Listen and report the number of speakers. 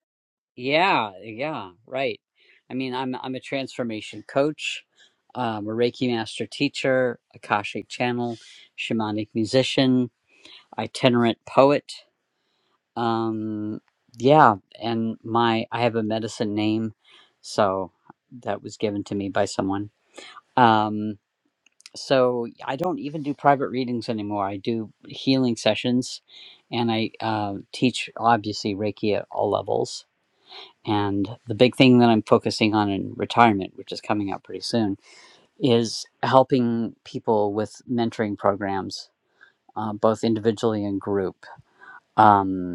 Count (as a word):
one